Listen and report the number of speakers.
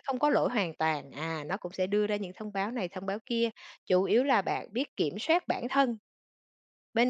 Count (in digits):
1